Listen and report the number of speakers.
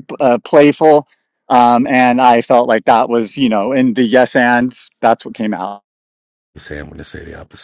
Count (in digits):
2